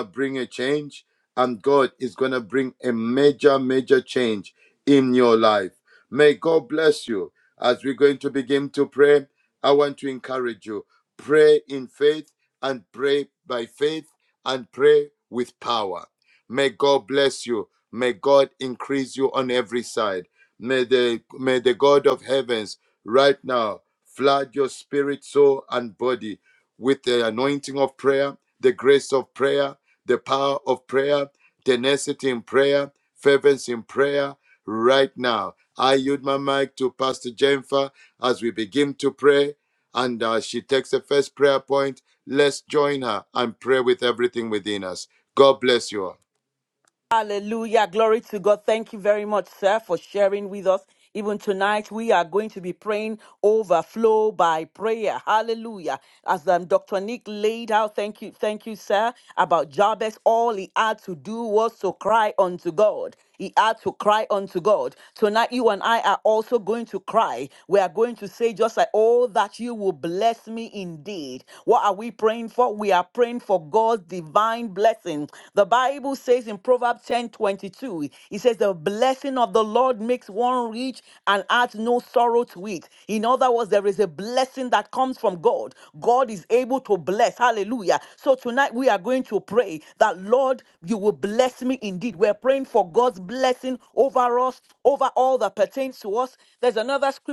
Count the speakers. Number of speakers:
2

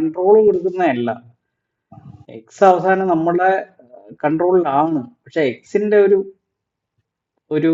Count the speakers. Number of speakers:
1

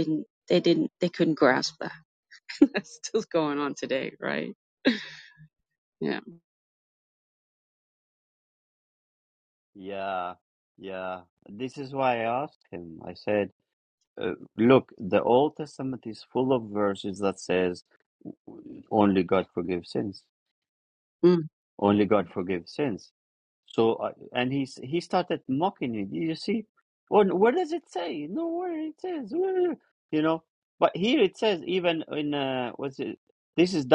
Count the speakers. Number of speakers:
2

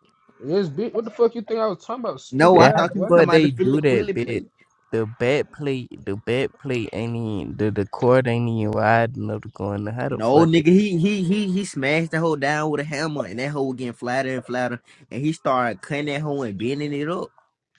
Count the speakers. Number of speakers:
3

